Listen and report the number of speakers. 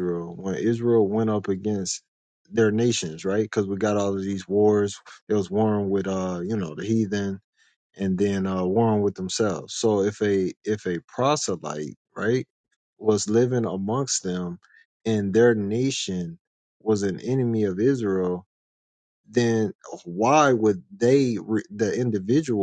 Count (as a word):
one